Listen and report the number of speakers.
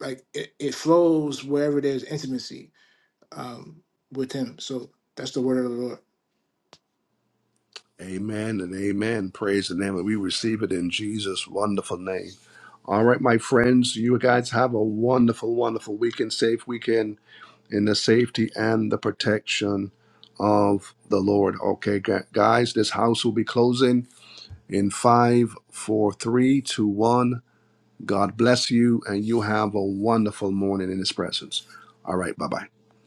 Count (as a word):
two